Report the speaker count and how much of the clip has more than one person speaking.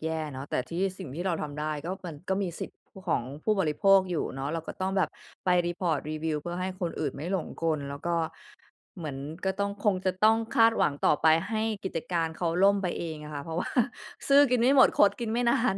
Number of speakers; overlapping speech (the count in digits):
1, no overlap